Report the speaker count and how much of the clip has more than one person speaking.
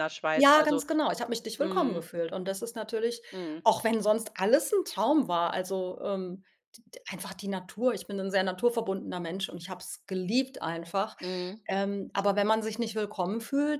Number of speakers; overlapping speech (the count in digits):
2, about 7%